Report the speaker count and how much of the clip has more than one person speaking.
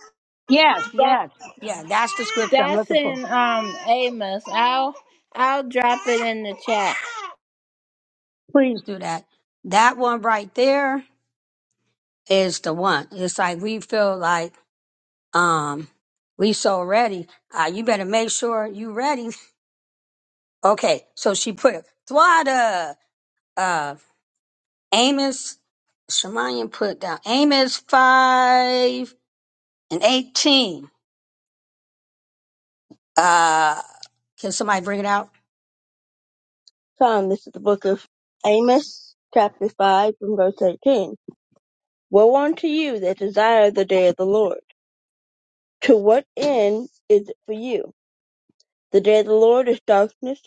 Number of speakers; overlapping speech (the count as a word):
three, about 2%